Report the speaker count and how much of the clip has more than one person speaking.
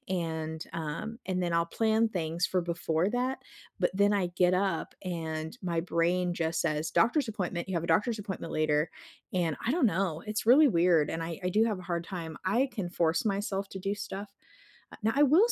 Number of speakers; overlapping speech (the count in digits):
1, no overlap